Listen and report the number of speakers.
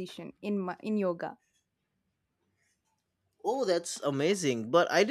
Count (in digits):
2